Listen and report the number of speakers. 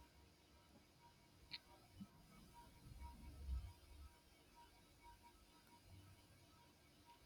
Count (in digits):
0